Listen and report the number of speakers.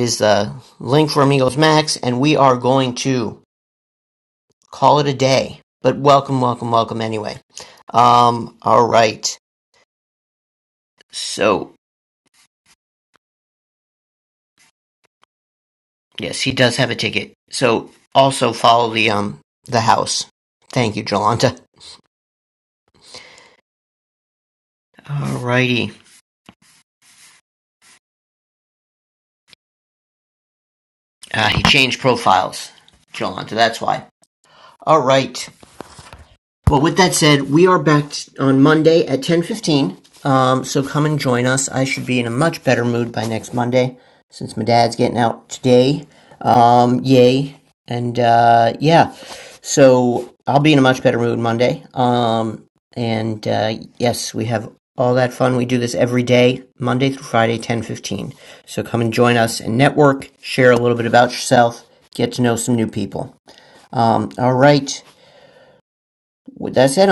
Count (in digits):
1